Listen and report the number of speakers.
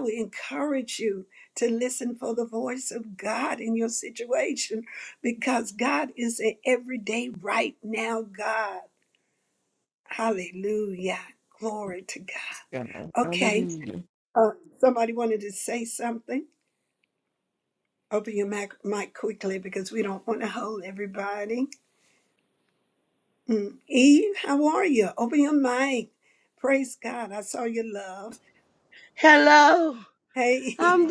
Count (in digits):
3